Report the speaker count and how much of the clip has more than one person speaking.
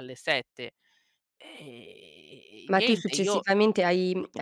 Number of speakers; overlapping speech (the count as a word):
two, about 15%